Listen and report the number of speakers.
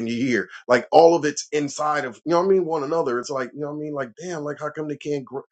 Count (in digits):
1